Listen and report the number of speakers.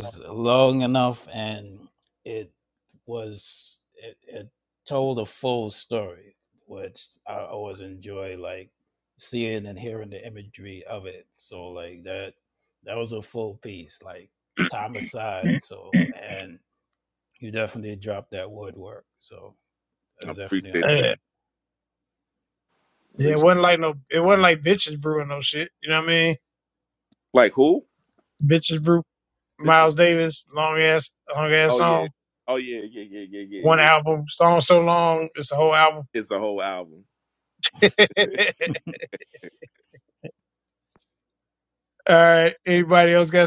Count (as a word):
three